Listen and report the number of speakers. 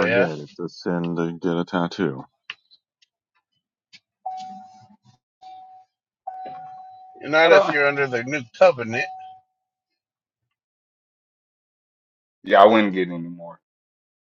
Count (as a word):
three